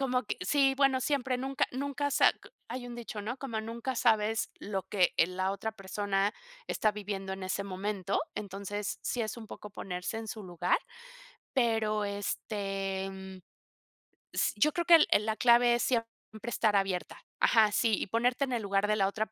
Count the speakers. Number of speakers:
one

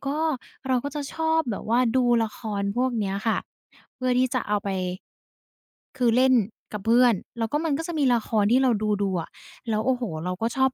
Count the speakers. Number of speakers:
one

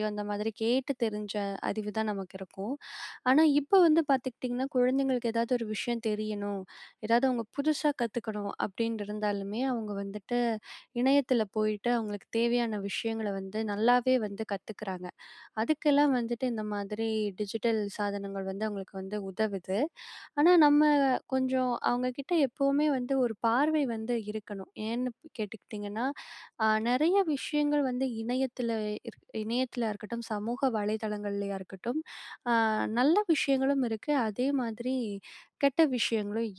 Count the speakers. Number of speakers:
one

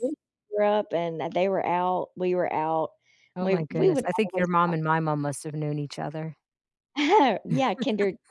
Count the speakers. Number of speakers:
two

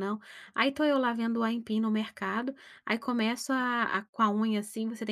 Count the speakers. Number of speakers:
one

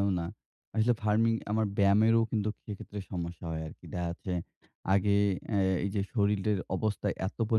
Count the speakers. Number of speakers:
one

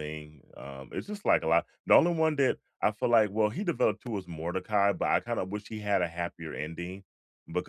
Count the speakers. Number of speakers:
one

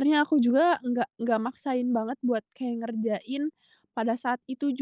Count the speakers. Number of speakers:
one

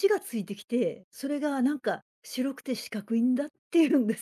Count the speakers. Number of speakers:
one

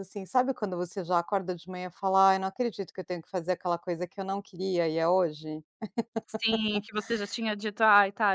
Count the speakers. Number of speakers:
two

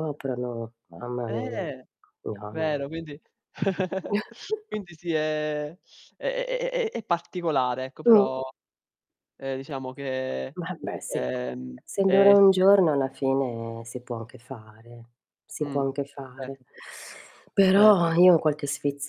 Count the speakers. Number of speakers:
two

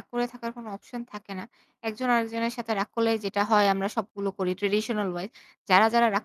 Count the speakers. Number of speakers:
one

